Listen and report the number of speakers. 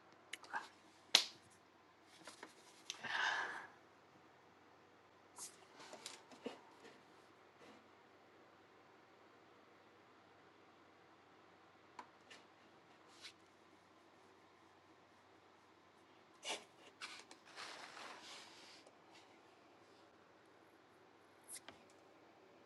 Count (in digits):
0